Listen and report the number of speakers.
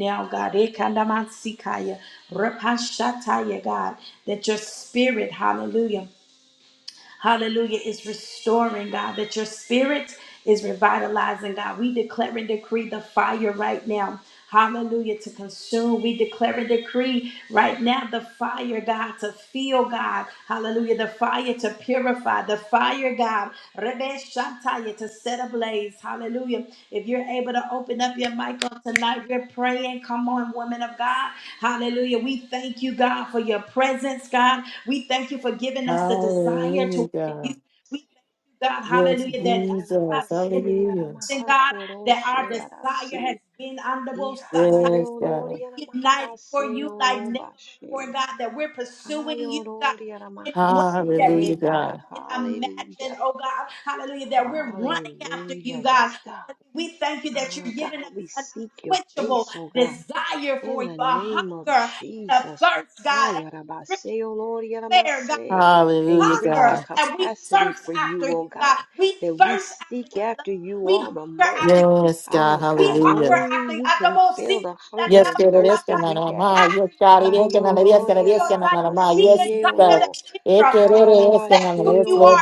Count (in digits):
3